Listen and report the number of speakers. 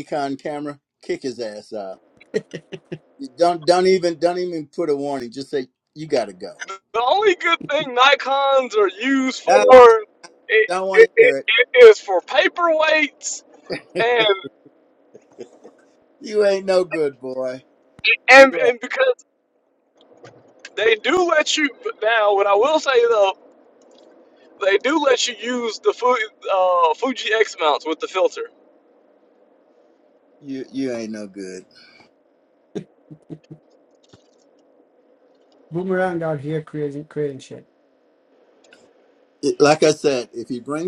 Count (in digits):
3